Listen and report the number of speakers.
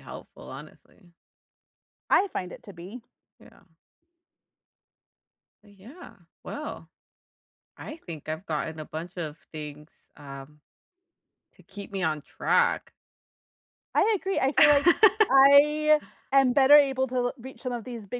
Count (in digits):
2